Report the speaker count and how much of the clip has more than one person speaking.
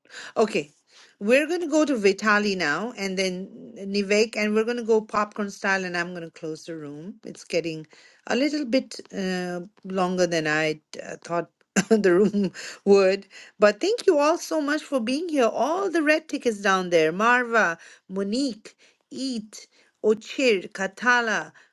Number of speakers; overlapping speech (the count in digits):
1, no overlap